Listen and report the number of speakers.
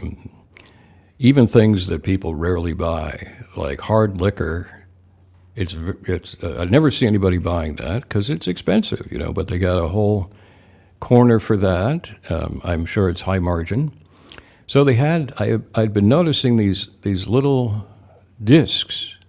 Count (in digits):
1